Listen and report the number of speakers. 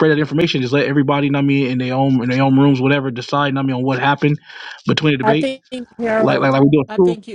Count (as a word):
two